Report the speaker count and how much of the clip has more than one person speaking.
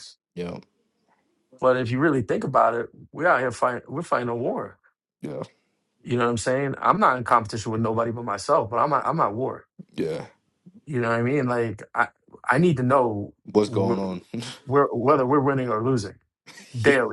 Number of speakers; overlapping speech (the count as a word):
two, about 2%